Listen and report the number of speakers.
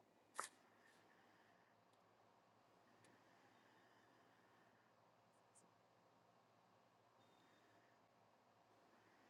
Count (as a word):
zero